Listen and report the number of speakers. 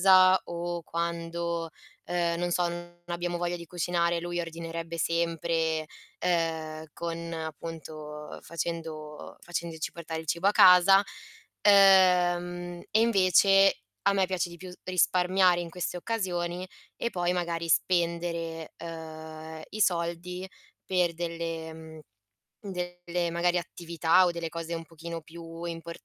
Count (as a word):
one